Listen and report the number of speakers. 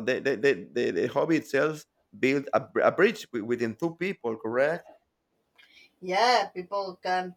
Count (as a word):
two